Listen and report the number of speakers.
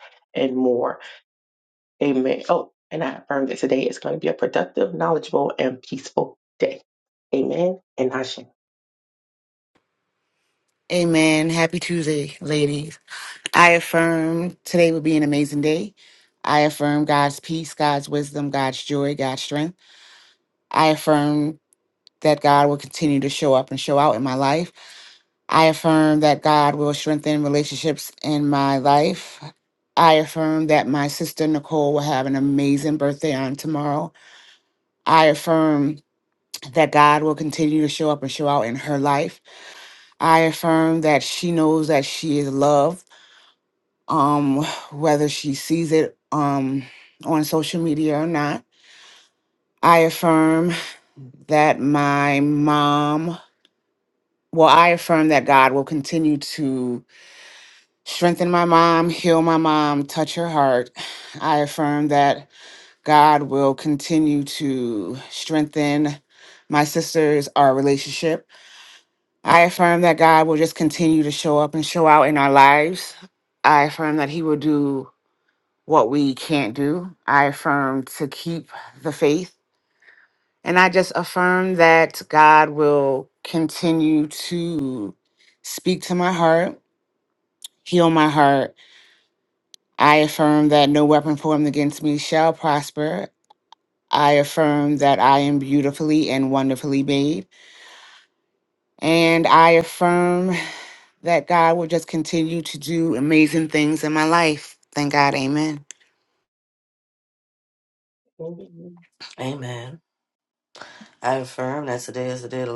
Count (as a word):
three